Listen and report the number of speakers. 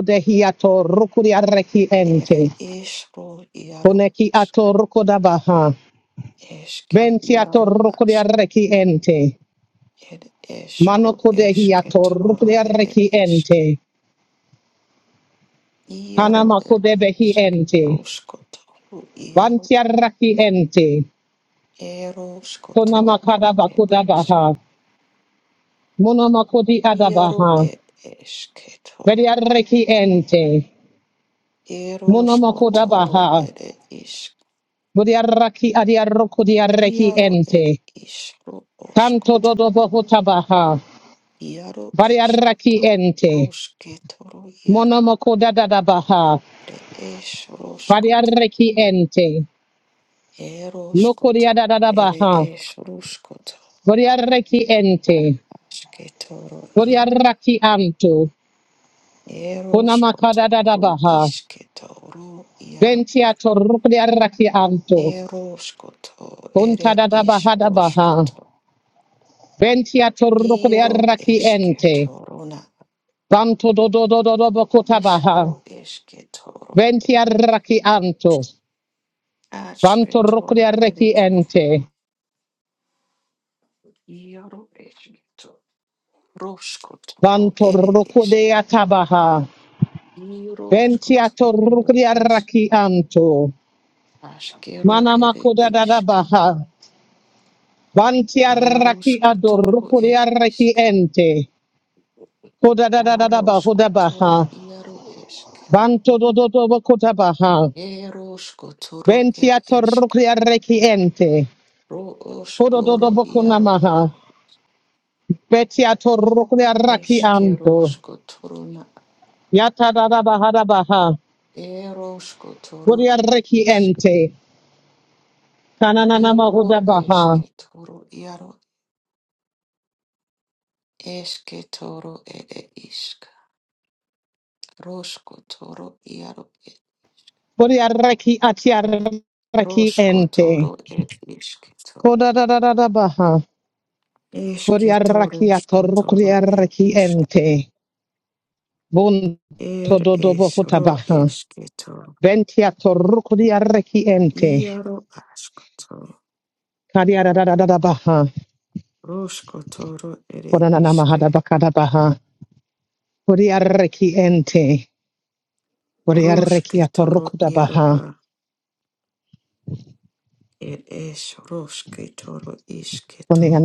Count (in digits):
2